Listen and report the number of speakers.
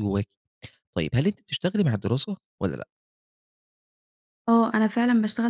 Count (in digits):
2